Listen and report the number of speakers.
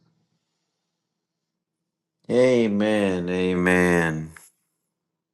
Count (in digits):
1